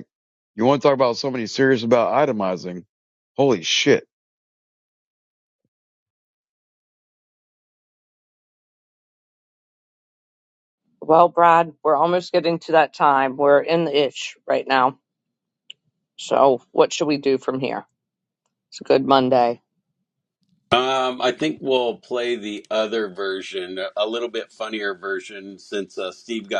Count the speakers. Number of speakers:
3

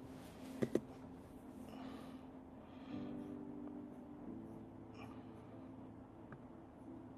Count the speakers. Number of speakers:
0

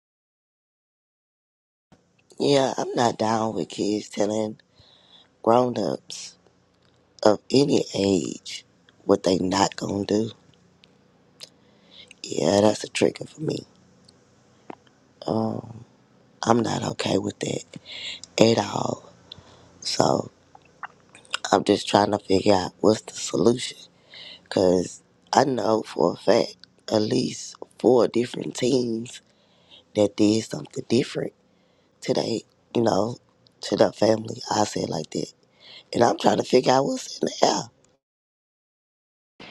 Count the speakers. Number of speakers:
1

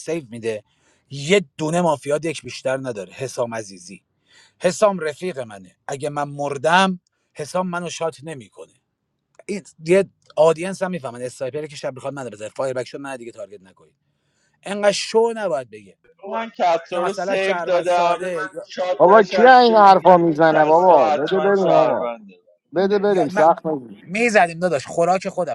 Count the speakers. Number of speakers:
3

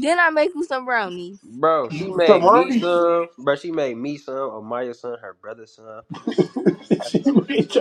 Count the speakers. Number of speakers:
3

